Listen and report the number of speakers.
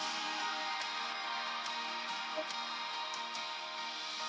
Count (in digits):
0